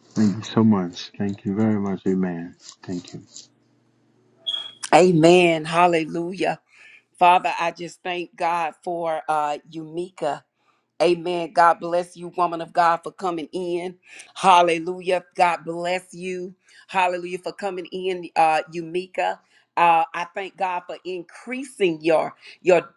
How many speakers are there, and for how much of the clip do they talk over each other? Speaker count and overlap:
2, no overlap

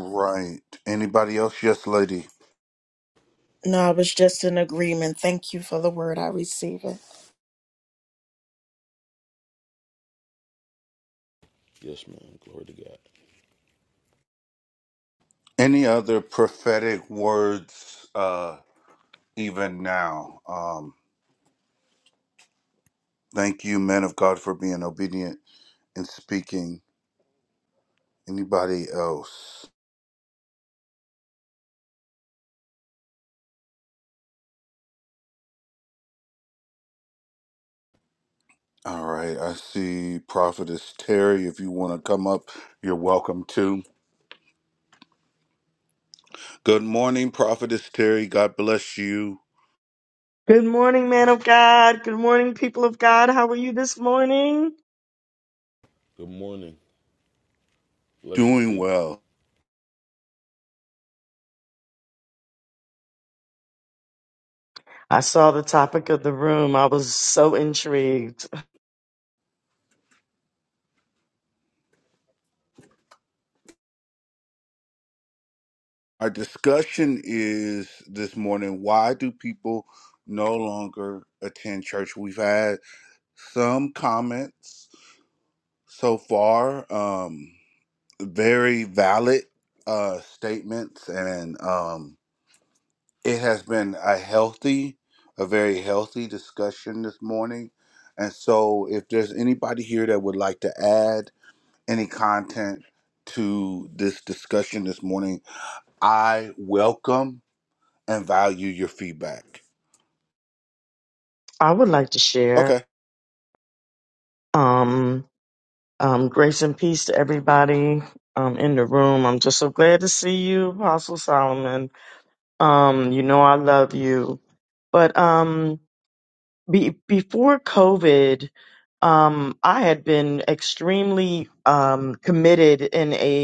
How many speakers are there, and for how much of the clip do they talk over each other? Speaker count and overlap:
4, about 1%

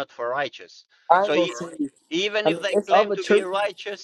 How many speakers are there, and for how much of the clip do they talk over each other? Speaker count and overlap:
2, about 36%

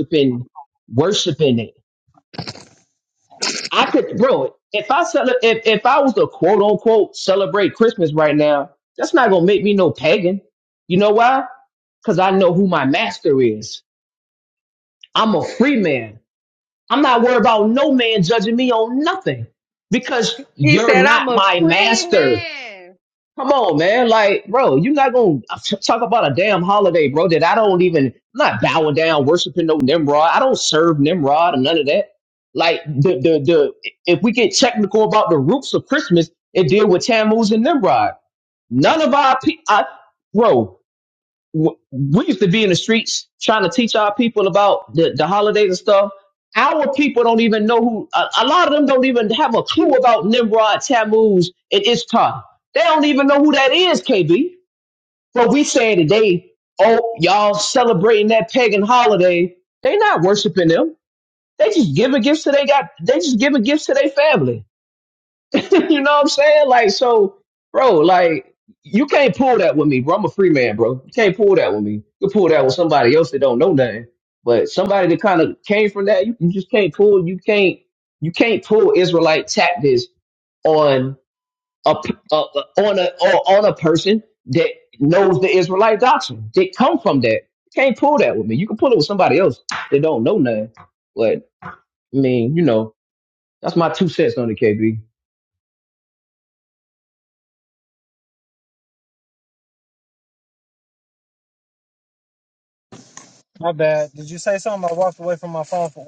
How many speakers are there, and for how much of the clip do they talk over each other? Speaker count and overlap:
3, about 2%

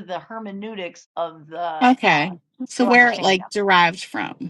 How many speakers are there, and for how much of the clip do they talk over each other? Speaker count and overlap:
2, about 28%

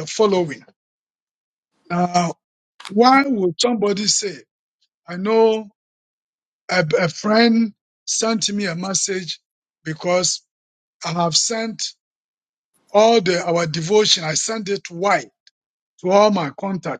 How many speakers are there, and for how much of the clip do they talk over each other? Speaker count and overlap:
1, no overlap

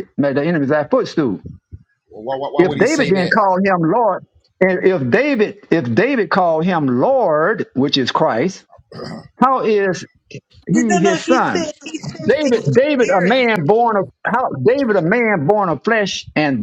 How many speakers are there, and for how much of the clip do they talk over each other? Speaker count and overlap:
3, about 17%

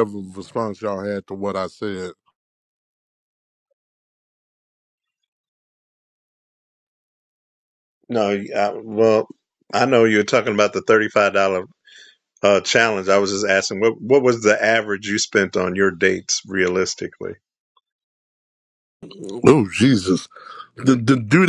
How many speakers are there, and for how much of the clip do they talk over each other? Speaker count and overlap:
2, no overlap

